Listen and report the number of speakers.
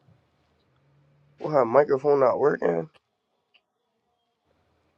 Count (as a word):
one